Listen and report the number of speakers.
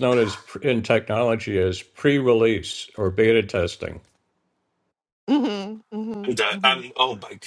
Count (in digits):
3